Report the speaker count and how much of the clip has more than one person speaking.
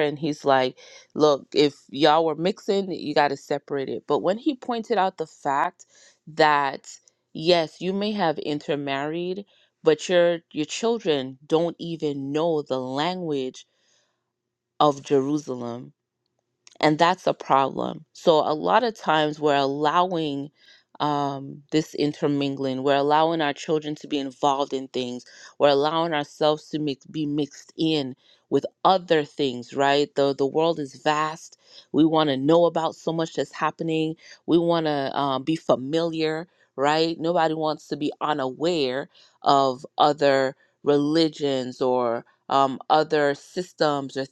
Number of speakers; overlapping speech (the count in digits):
1, no overlap